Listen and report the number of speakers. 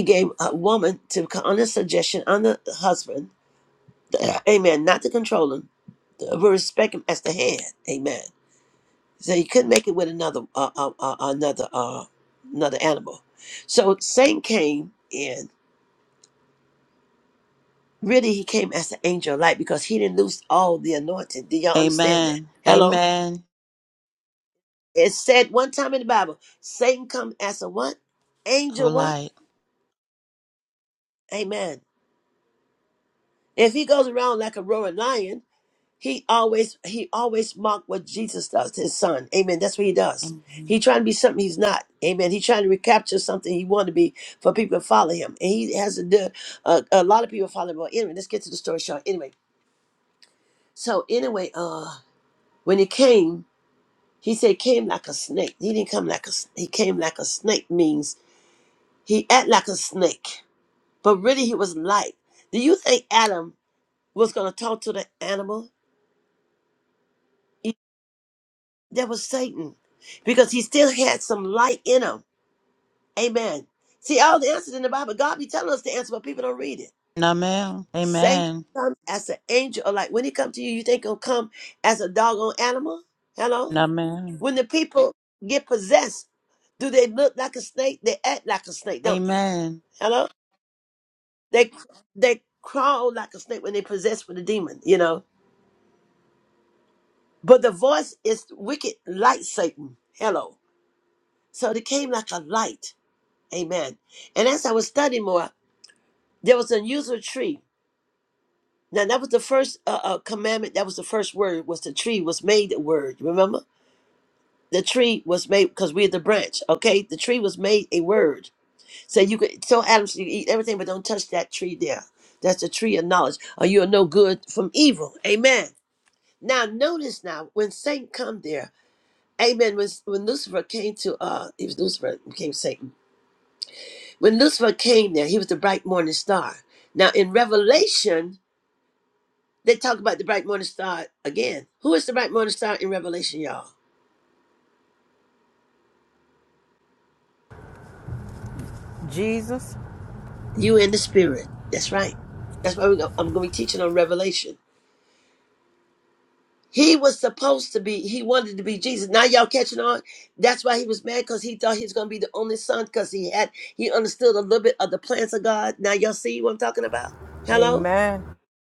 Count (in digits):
3